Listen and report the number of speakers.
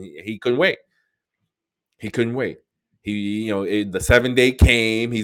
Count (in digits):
1